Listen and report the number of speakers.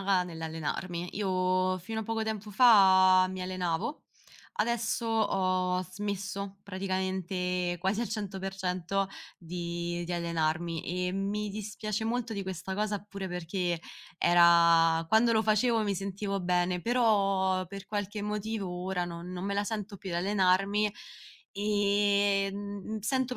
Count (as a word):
one